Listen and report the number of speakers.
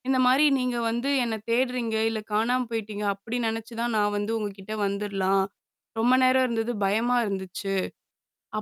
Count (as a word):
one